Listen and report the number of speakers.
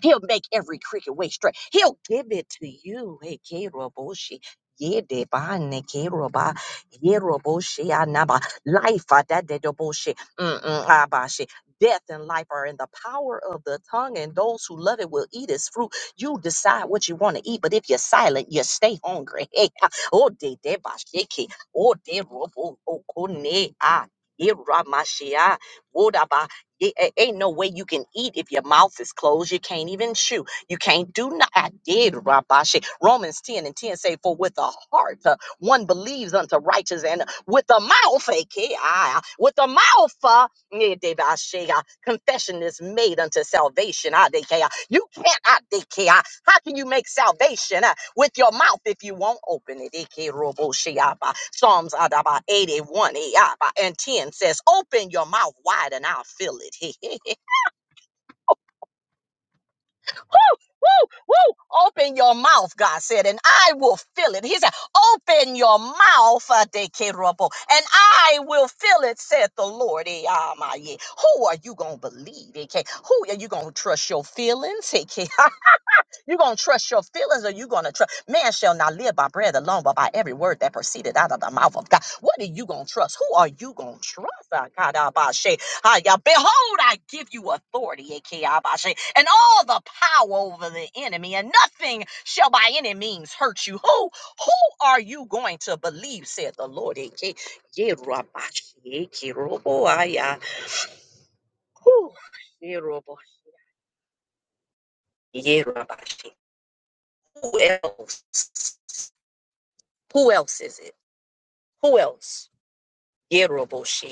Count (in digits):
1